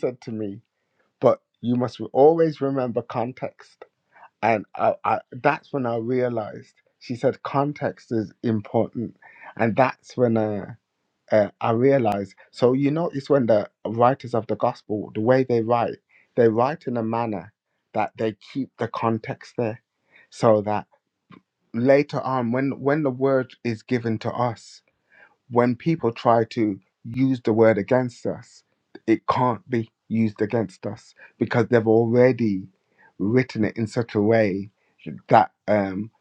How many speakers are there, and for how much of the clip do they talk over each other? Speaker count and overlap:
1, no overlap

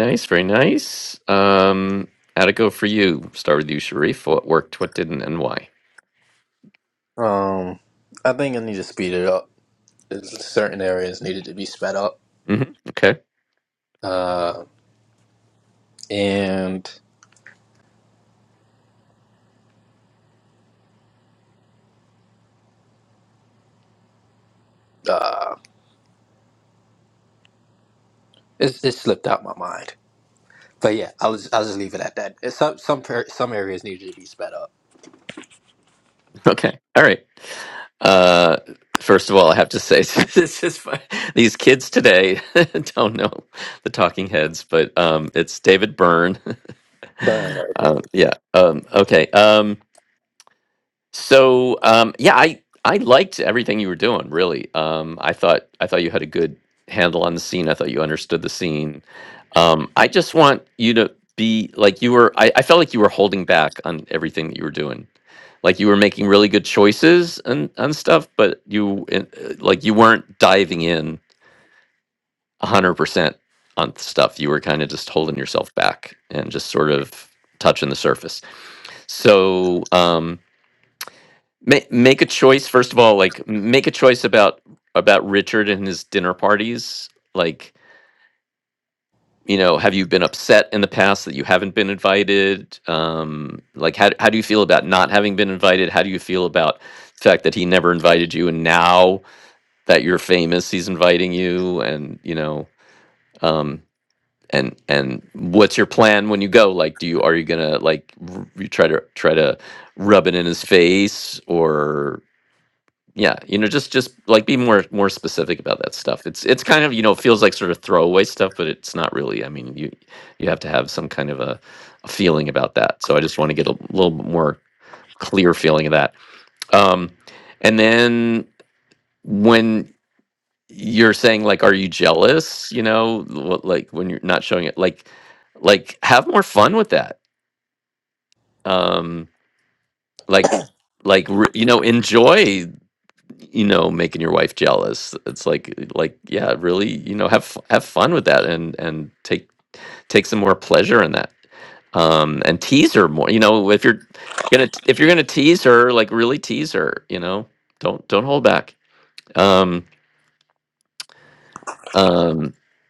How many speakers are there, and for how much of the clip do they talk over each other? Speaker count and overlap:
2, no overlap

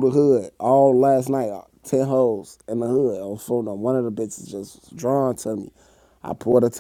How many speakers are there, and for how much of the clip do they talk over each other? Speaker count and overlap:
1, no overlap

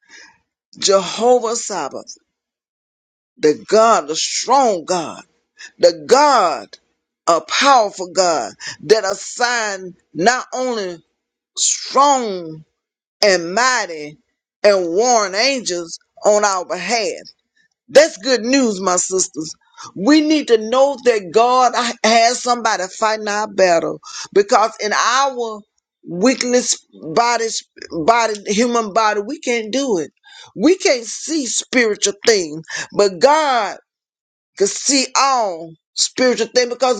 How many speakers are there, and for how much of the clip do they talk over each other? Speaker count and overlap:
1, no overlap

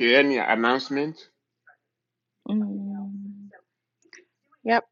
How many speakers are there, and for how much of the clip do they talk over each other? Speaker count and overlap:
2, no overlap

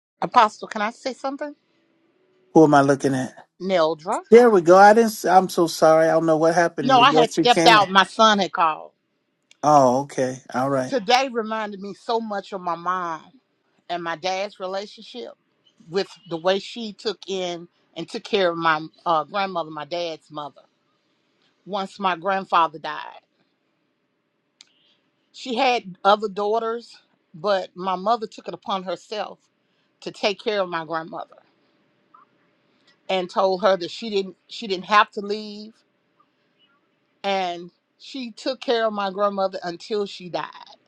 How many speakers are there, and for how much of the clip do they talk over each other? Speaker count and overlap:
2, about 2%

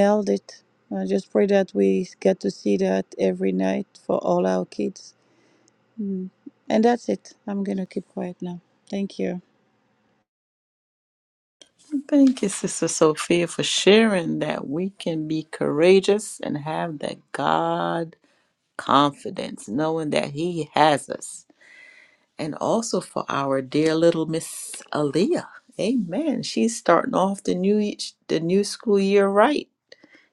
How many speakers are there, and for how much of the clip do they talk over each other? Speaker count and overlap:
2, no overlap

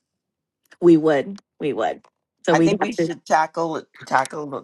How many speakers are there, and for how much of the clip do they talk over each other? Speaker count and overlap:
2, about 13%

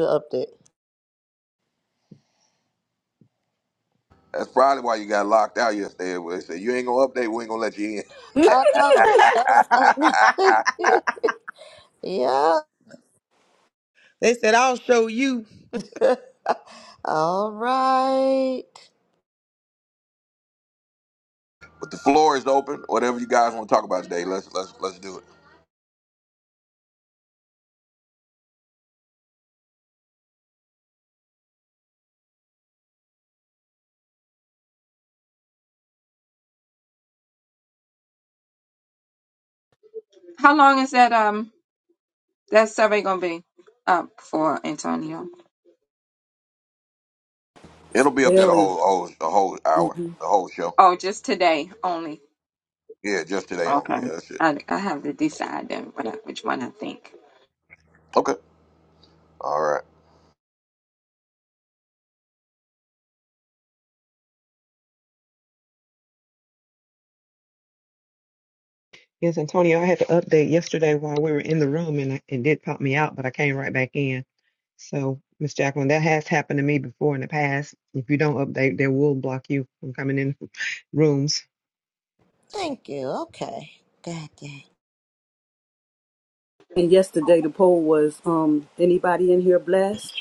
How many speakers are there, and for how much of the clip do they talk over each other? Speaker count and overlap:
6, about 1%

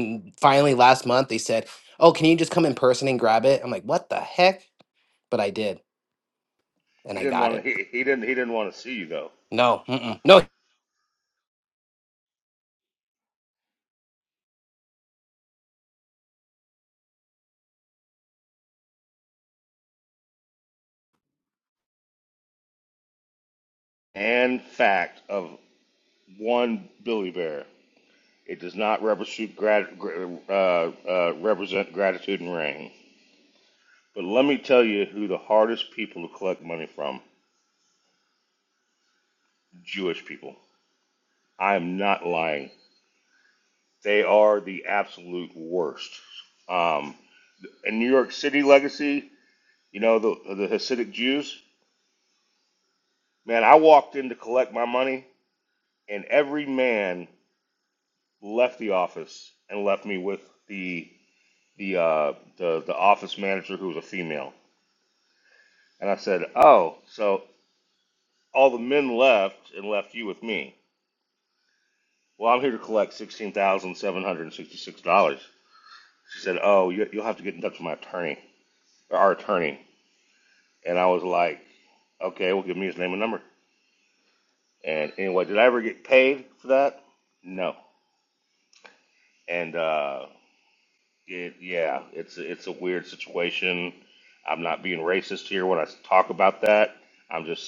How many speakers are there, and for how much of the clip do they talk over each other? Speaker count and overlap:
2, under 1%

